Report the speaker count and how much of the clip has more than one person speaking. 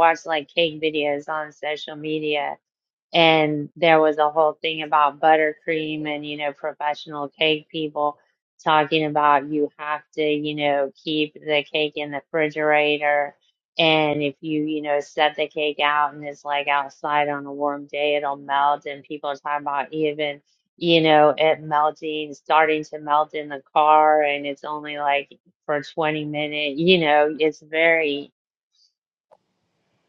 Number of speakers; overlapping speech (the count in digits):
1, no overlap